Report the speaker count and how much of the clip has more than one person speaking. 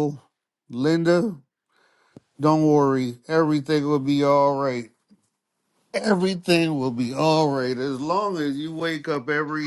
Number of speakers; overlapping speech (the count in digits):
1, no overlap